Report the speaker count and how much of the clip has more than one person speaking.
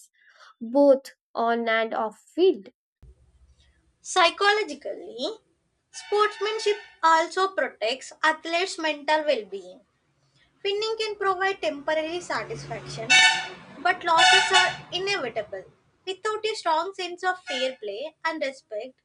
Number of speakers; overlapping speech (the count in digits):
2, no overlap